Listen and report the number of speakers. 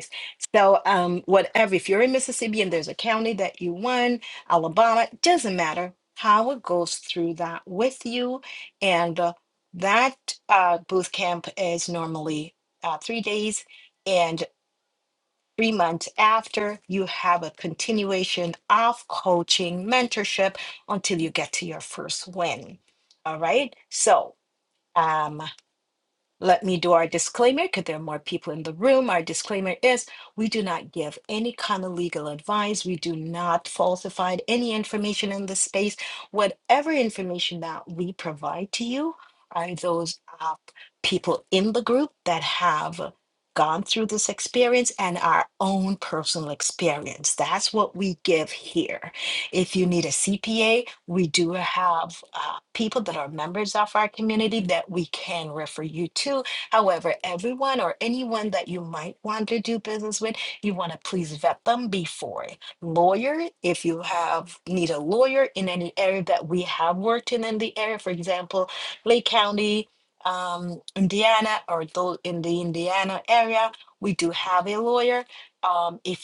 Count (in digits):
1